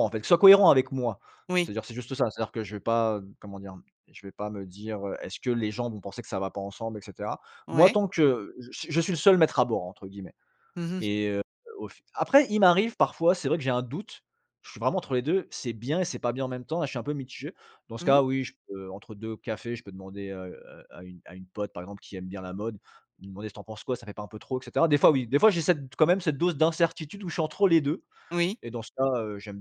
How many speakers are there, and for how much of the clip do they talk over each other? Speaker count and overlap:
two, about 2%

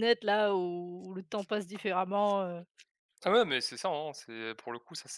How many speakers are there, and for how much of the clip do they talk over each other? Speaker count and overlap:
two, no overlap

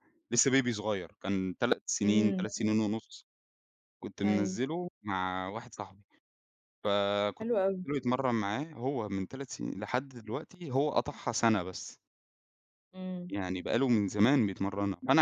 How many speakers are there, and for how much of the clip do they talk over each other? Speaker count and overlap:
two, about 5%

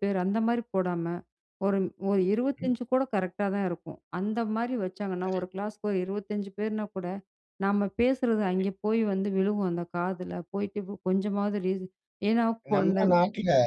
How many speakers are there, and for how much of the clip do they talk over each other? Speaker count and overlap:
two, about 6%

